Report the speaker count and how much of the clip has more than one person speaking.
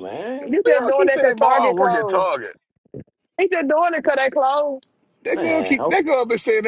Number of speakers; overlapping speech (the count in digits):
3, about 36%